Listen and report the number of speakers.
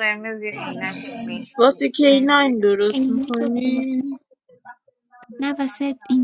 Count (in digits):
3